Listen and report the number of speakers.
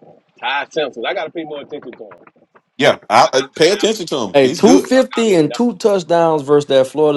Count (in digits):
3